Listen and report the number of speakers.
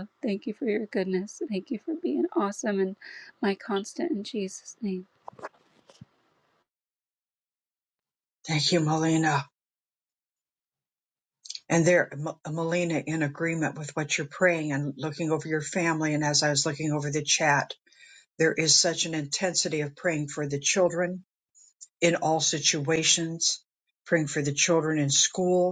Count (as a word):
two